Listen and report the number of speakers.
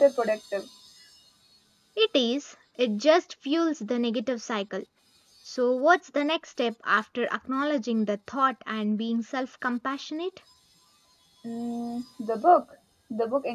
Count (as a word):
two